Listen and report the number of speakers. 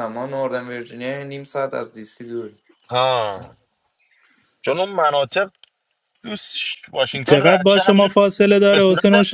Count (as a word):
three